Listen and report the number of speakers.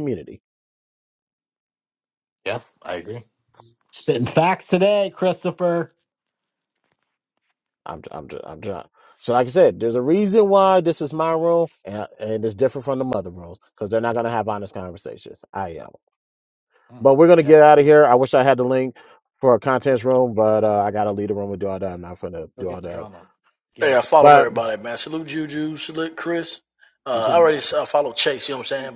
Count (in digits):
3